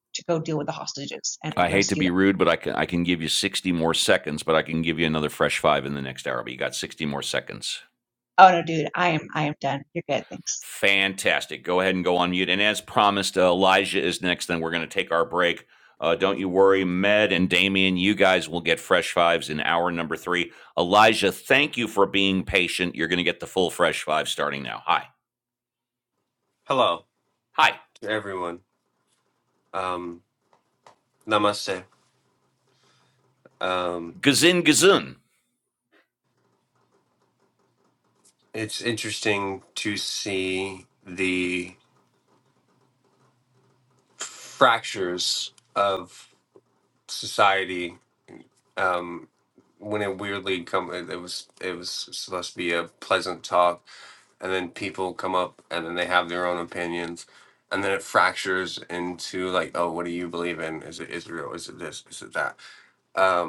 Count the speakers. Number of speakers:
3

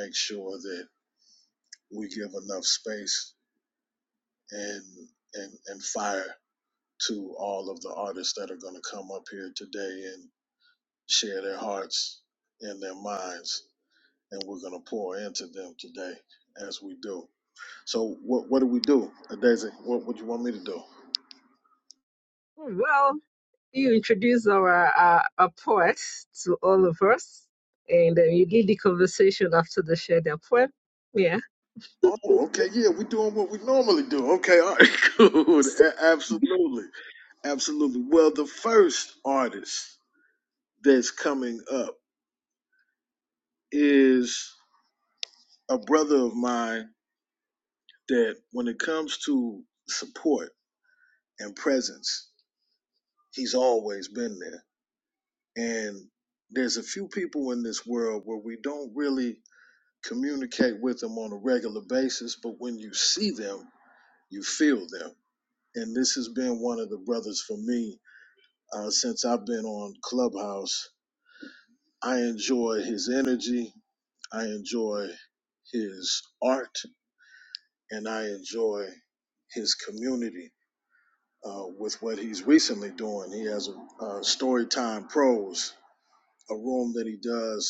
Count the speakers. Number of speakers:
2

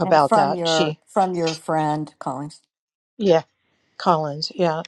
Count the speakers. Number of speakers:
2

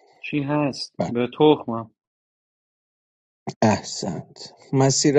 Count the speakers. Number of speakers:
2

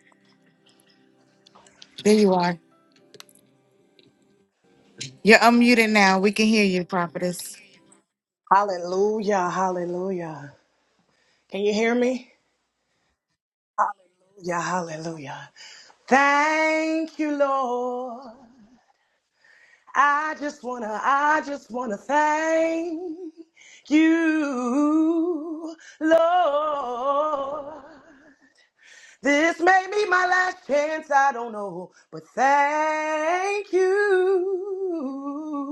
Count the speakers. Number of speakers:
2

